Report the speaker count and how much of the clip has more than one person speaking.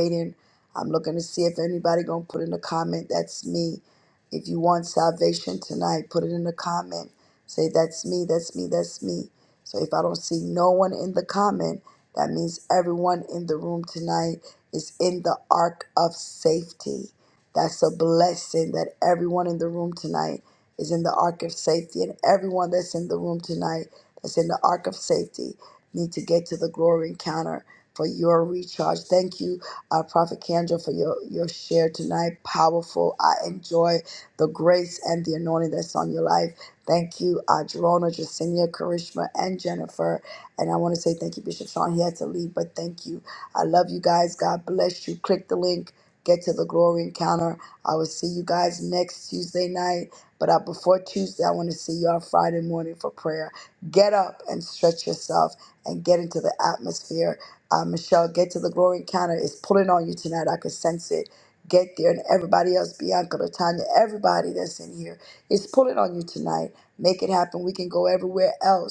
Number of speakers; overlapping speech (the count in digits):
1, no overlap